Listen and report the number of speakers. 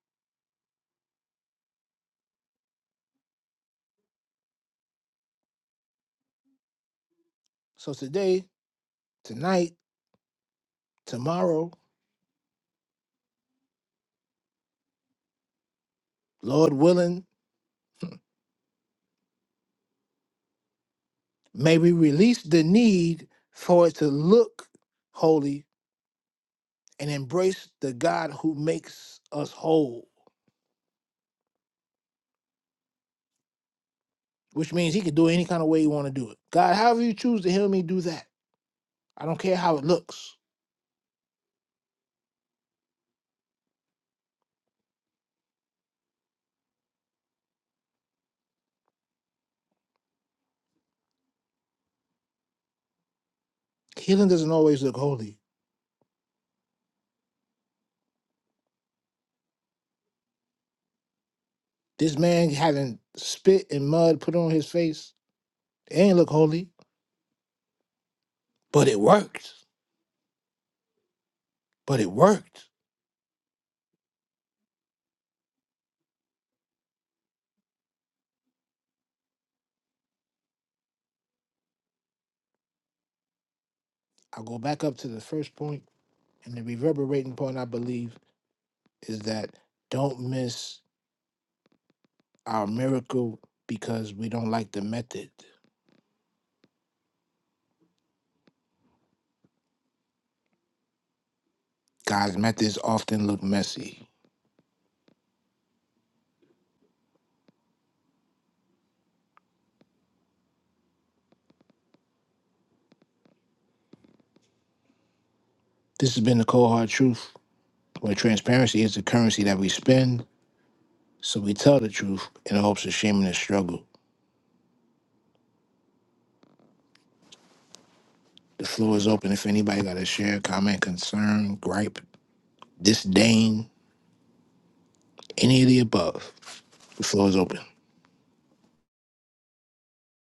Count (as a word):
one